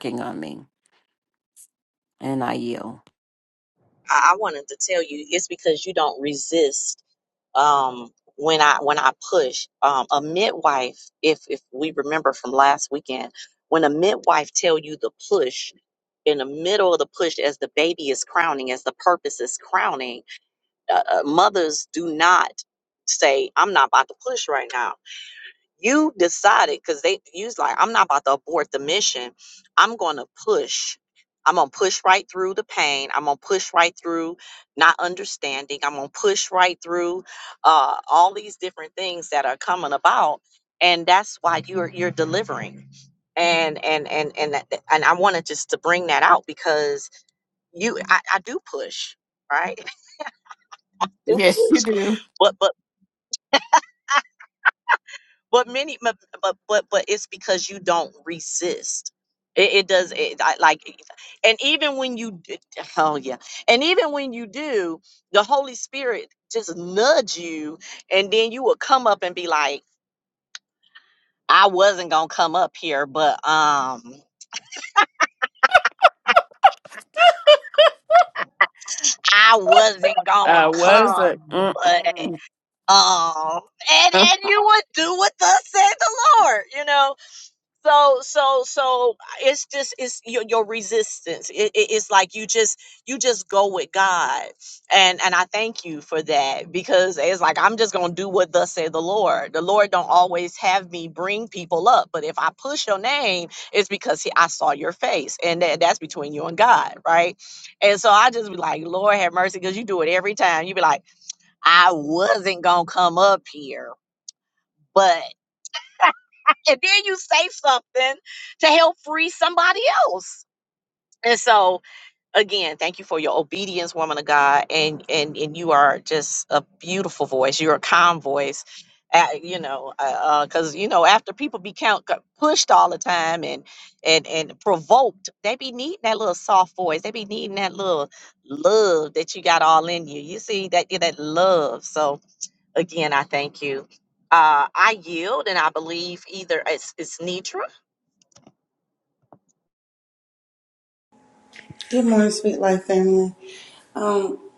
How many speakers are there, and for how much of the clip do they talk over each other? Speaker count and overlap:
three, about 1%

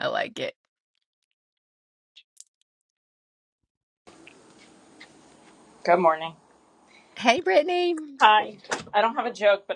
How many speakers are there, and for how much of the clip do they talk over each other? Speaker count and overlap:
two, no overlap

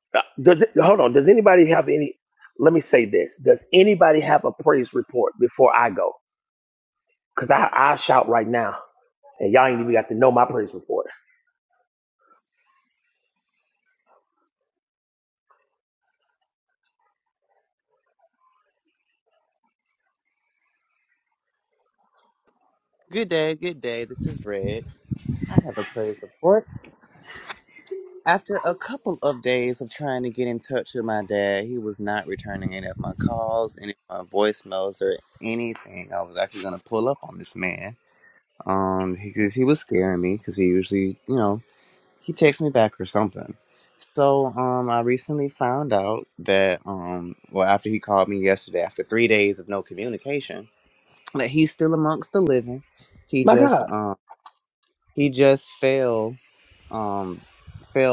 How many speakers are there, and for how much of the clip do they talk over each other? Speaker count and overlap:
two, about 1%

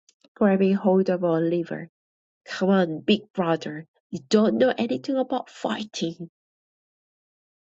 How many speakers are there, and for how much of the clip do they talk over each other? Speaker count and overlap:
one, no overlap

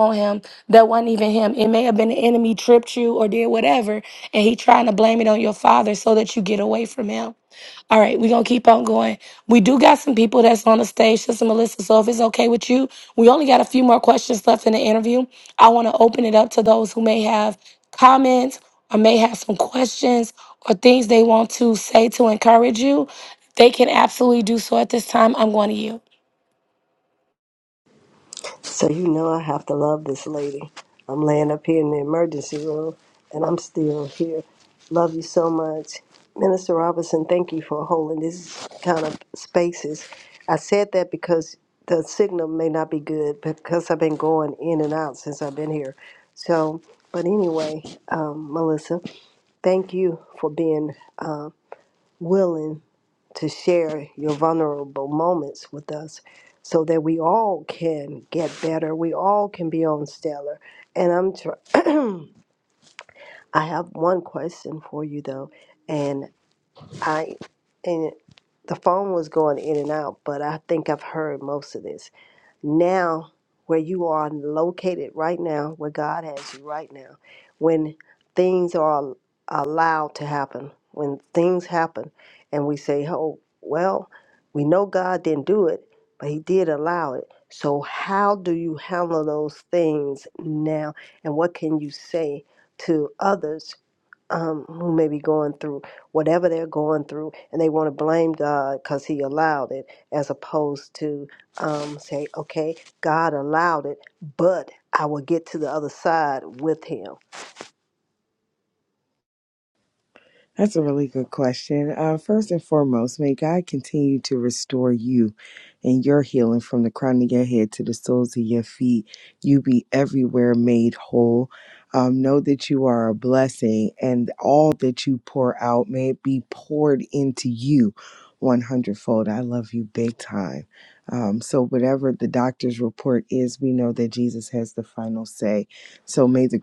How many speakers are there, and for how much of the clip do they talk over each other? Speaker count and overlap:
three, no overlap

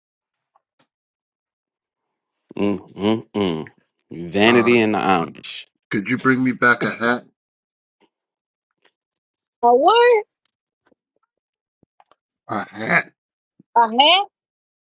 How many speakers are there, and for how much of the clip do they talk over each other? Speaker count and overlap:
three, about 2%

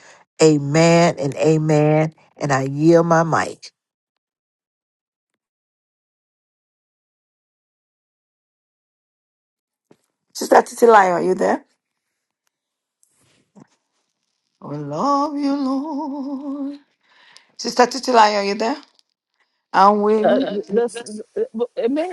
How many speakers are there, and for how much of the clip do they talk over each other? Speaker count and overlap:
three, about 2%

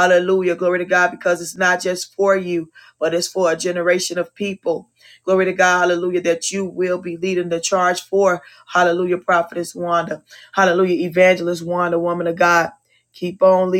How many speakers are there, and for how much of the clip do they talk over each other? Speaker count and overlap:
one, no overlap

